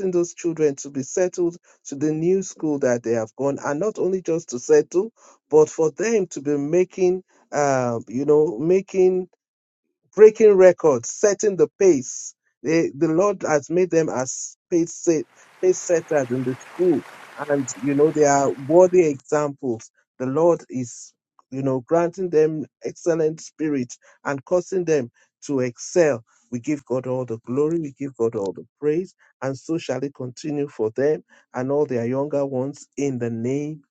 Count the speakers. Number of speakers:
one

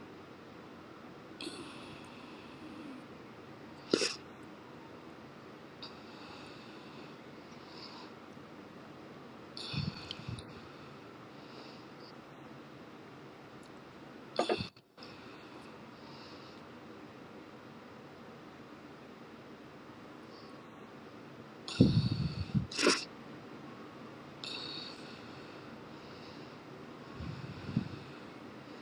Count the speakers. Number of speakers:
zero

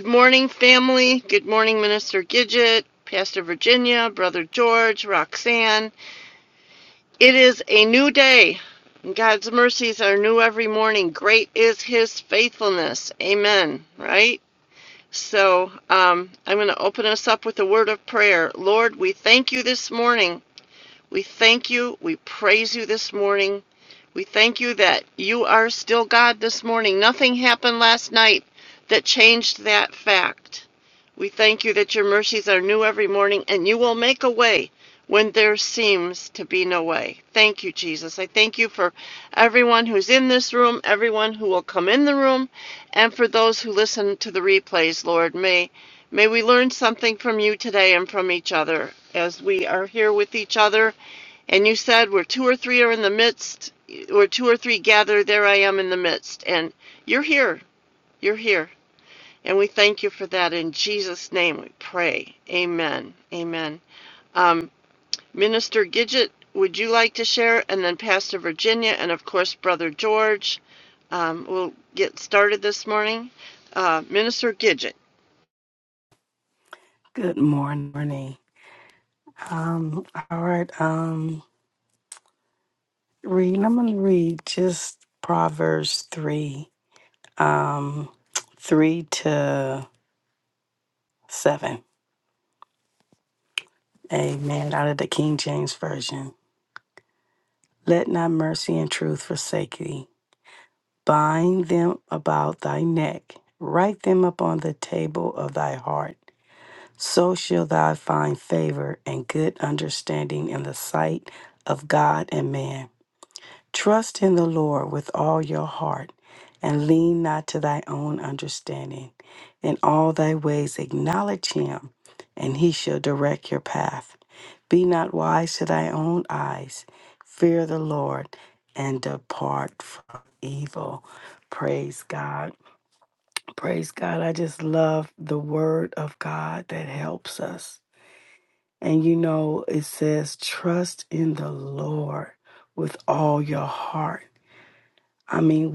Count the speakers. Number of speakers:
two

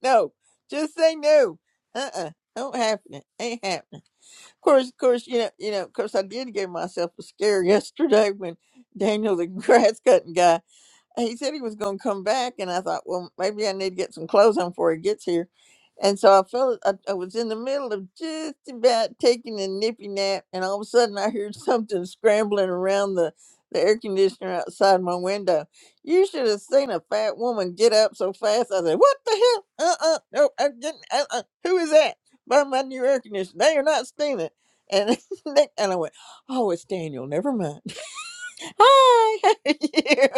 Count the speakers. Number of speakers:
one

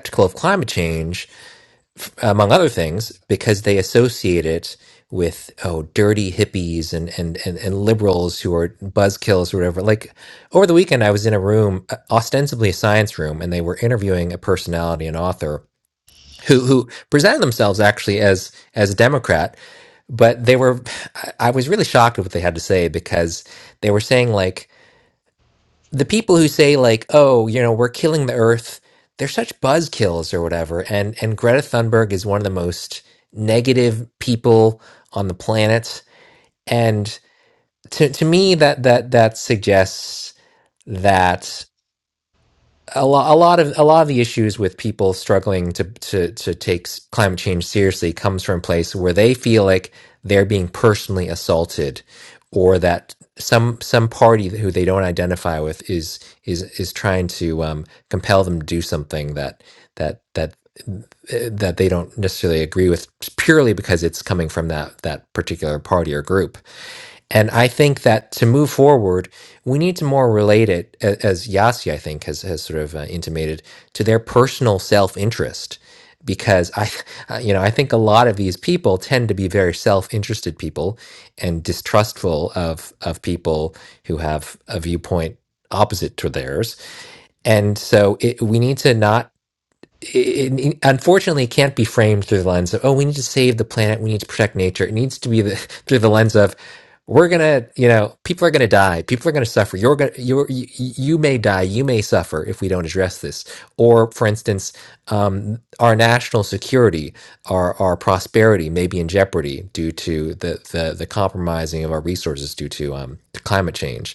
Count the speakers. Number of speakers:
one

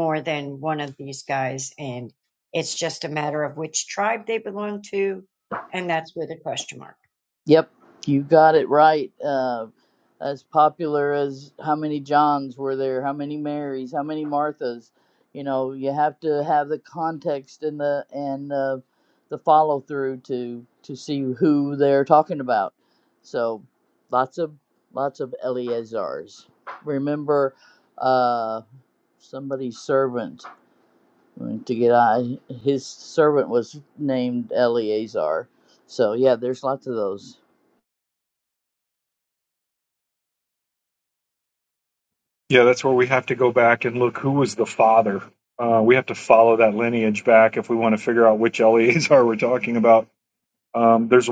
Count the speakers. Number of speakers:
three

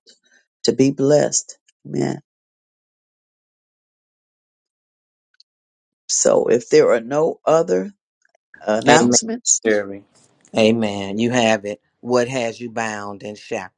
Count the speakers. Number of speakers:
two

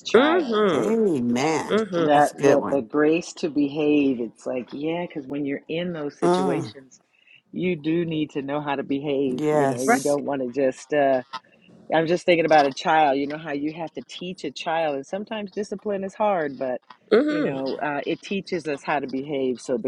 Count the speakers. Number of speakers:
three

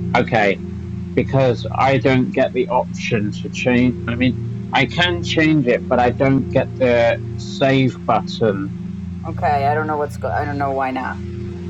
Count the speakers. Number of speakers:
two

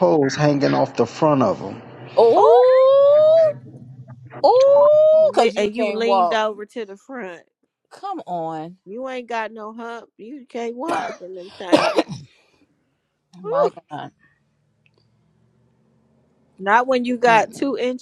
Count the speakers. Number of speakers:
three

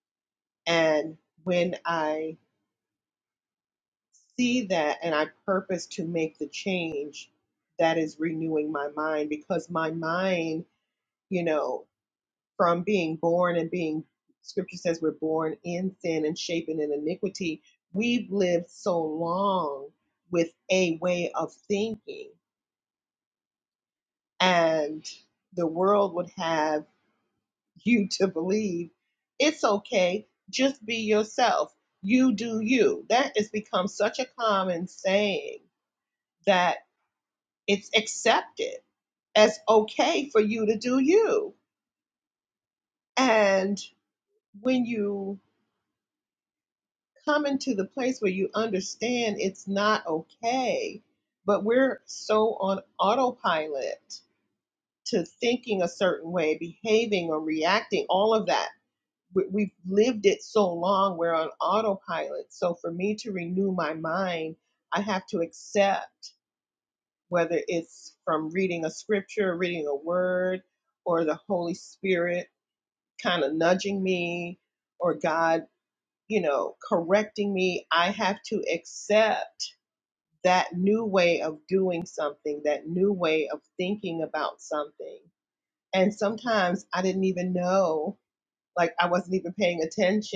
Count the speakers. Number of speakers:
one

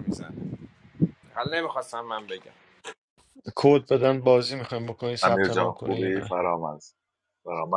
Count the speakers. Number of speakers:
three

